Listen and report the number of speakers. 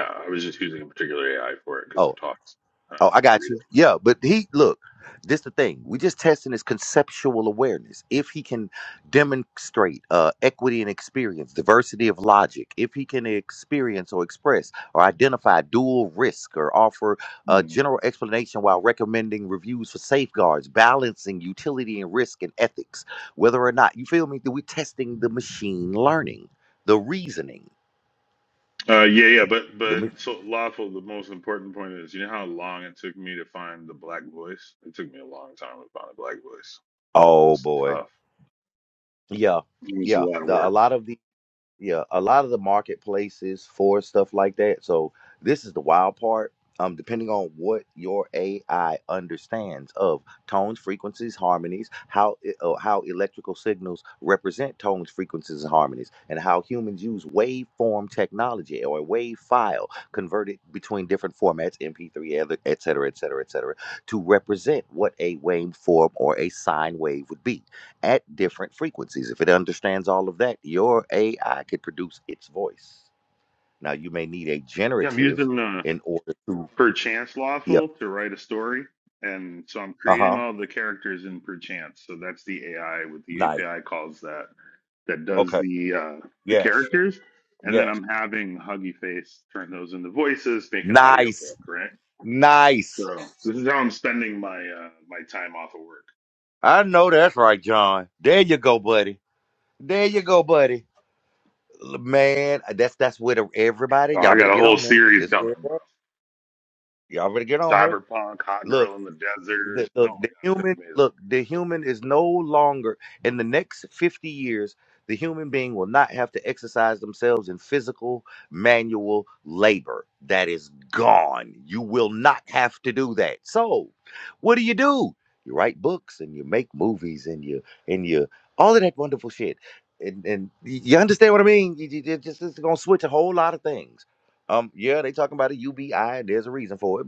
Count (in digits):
2